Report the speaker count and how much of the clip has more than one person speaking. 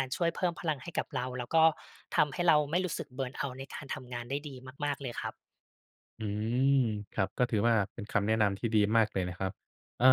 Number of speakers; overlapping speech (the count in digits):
2, no overlap